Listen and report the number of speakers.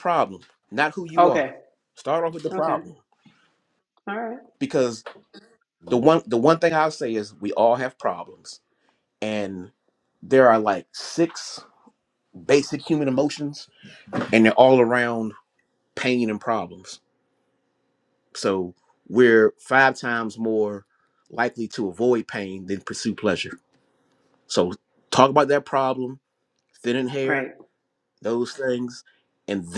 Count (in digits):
2